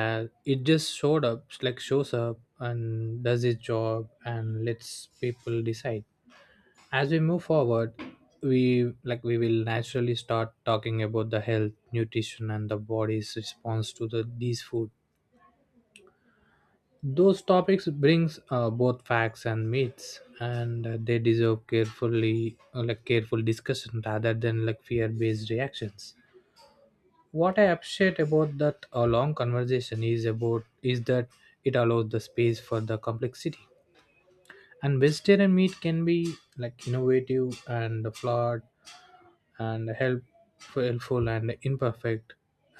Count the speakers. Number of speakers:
1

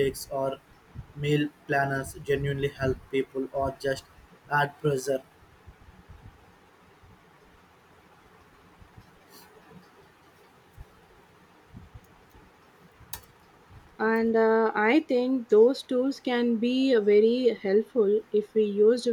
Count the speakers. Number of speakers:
2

